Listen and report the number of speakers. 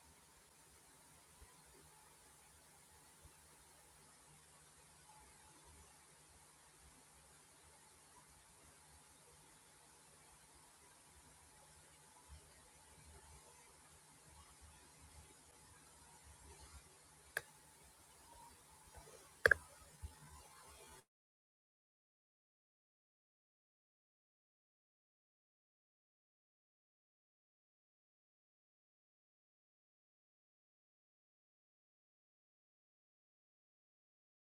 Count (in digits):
0